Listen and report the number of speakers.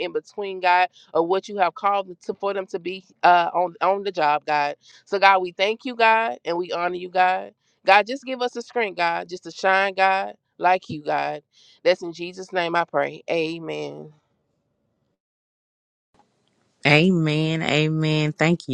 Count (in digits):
2